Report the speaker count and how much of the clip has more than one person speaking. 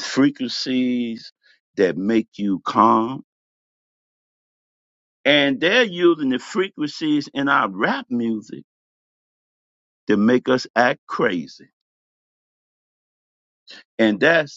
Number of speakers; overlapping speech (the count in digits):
1, no overlap